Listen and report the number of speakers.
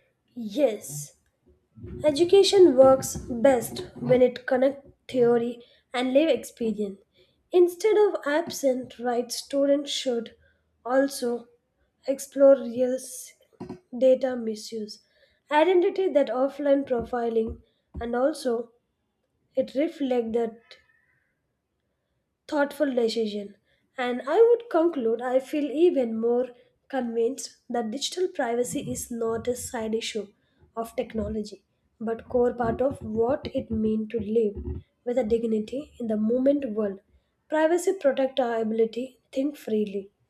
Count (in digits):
1